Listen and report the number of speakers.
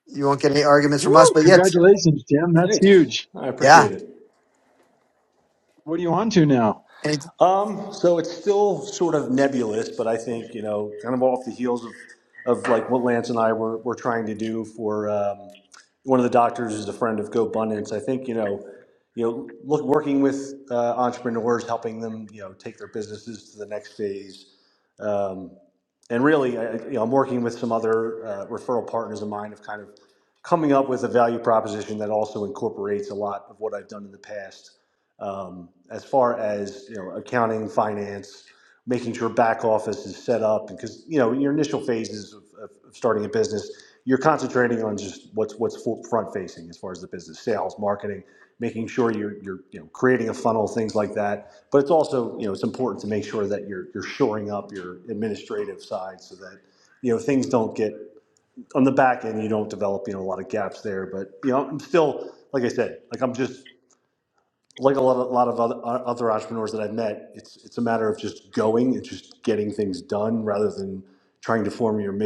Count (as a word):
three